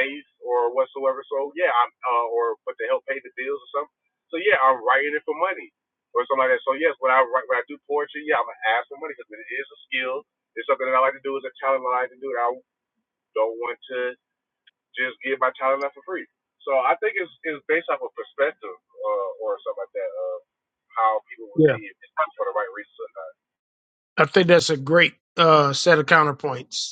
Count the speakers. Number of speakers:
2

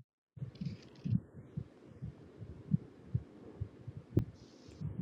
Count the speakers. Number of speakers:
0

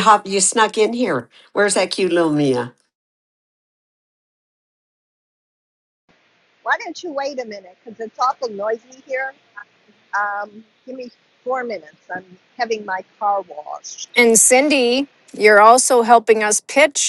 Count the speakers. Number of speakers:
3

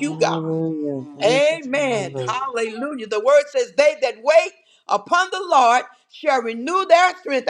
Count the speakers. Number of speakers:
2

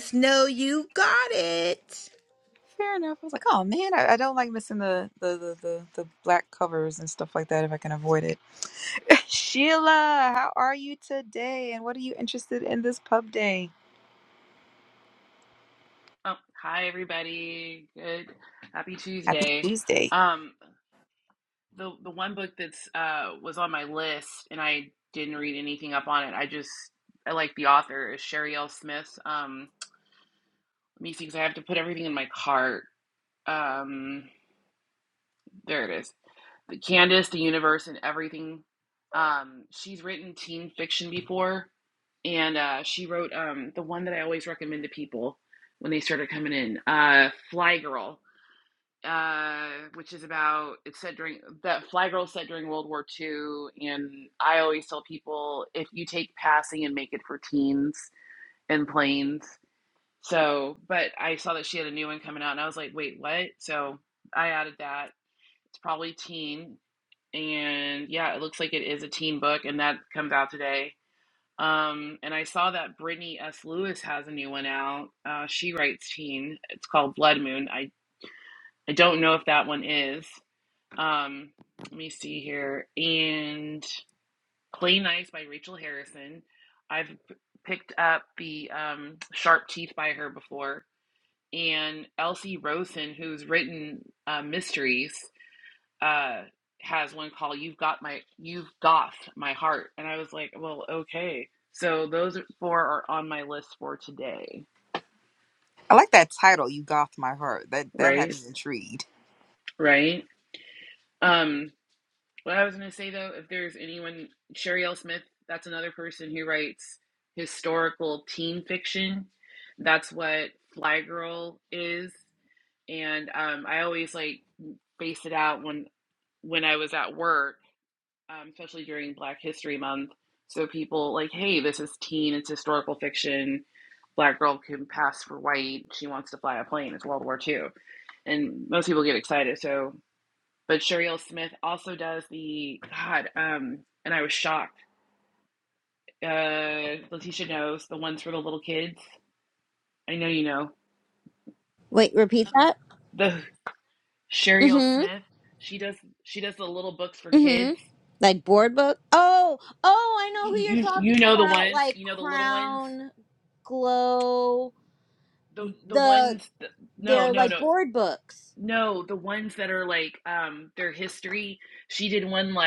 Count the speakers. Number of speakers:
4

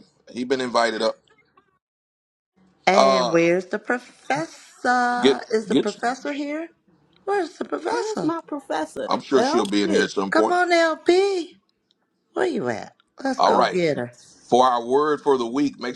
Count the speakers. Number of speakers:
3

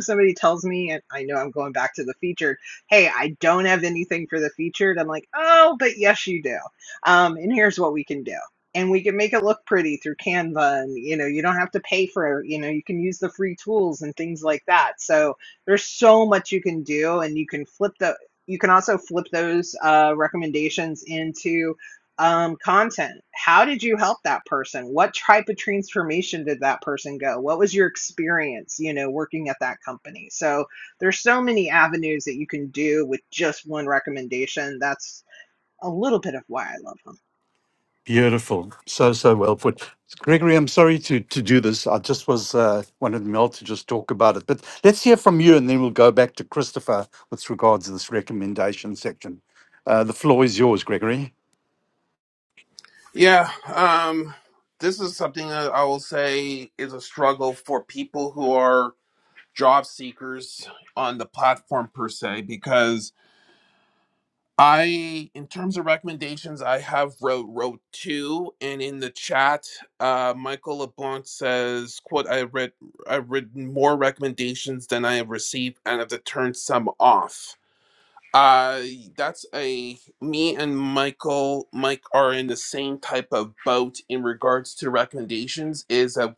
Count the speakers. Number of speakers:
3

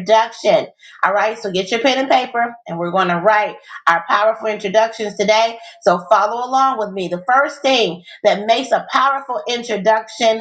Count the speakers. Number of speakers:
1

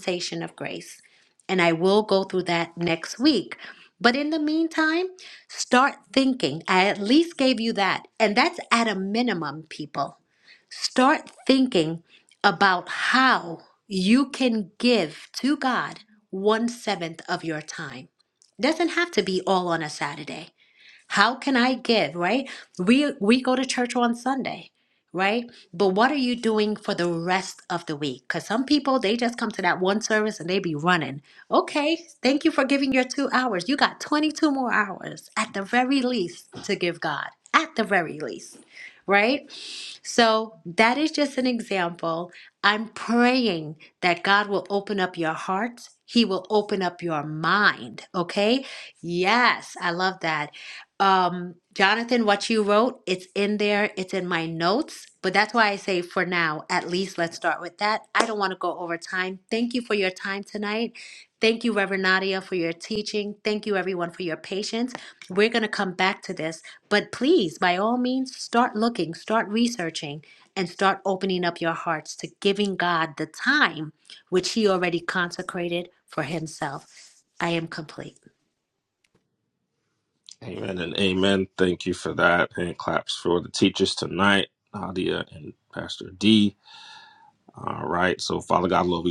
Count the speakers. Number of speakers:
2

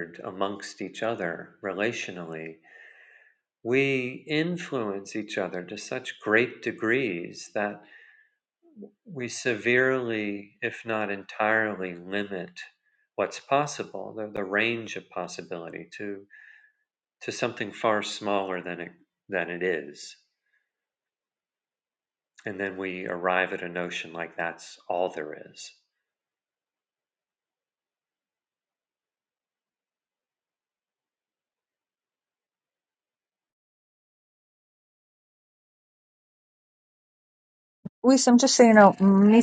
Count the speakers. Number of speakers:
2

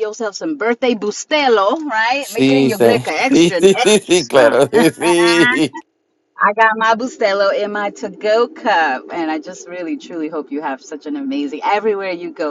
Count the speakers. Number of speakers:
2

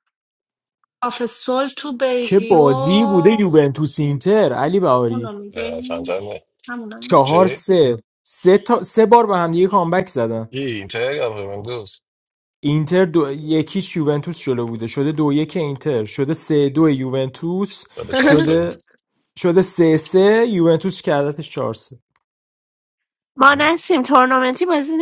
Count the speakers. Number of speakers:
4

